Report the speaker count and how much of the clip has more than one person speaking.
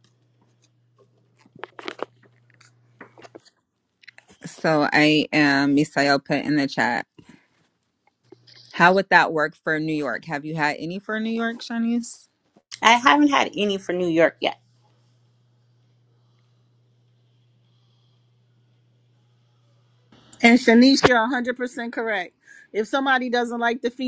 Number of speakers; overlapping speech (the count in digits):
3, no overlap